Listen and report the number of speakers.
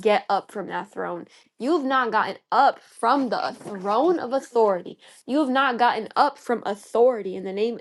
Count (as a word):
one